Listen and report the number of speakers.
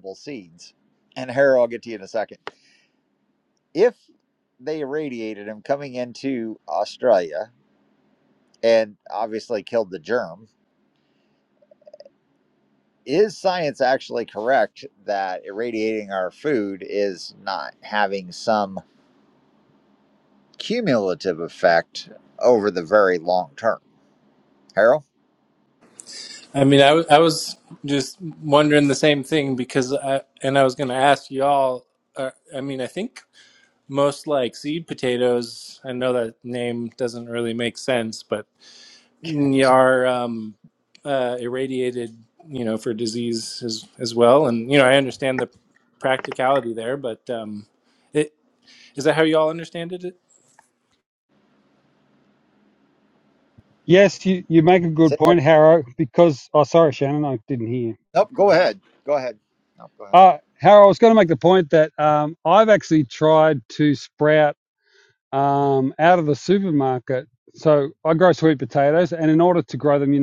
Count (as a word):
three